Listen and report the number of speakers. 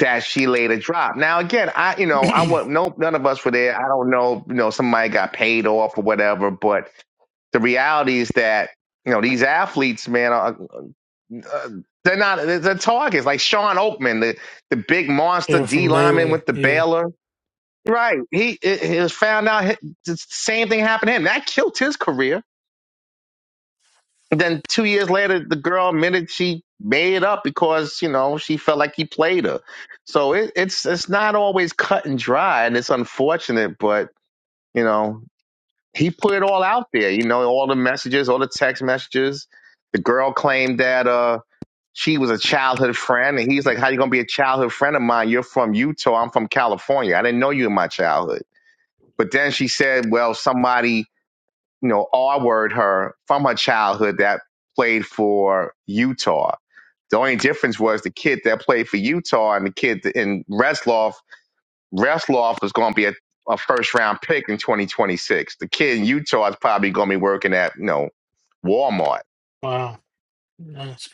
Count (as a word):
two